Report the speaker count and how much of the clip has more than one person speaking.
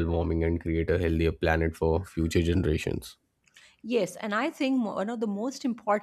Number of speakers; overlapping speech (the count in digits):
2, no overlap